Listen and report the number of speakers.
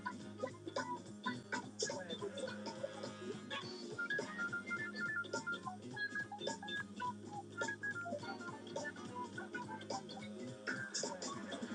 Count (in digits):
0